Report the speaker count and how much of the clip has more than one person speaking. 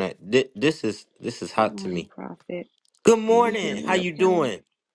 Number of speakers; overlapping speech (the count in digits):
2, about 35%